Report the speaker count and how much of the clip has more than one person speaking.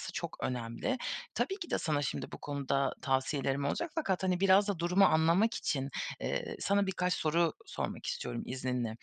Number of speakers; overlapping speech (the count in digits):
1, no overlap